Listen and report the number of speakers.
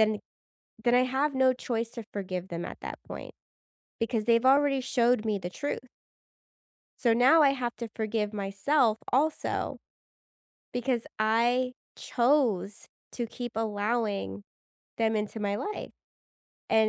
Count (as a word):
one